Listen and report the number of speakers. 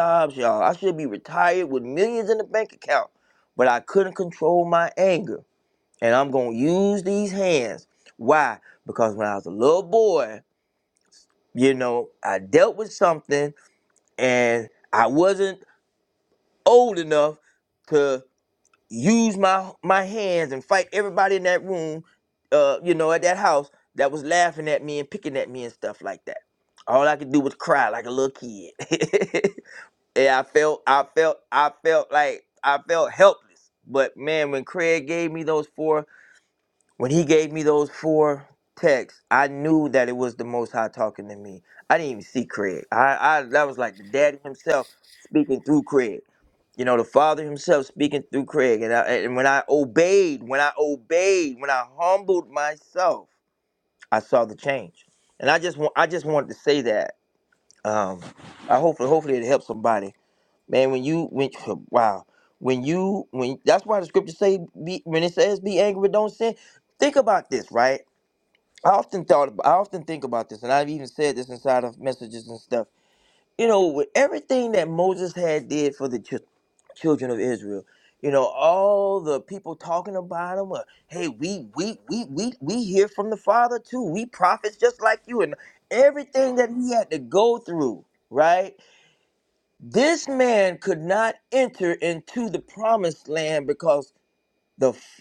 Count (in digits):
1